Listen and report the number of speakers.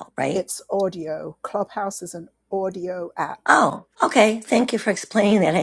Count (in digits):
2